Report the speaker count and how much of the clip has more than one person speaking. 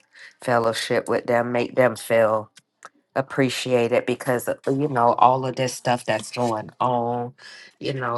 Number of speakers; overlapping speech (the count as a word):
one, no overlap